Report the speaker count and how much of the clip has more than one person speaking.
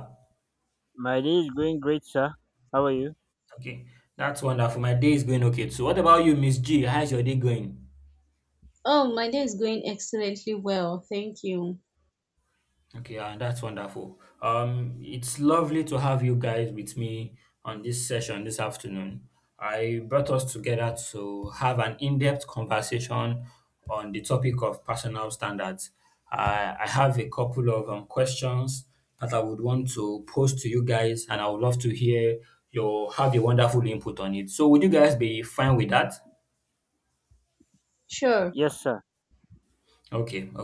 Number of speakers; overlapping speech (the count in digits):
3, no overlap